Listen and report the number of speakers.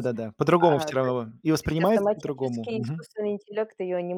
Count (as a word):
two